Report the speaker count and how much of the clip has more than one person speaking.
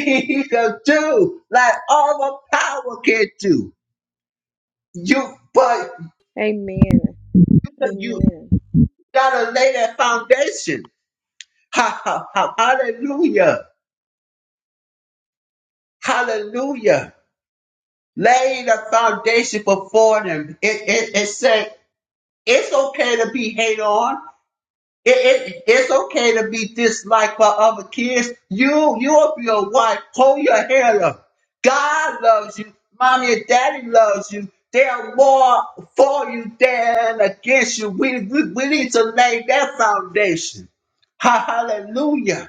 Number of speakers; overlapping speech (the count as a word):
two, about 1%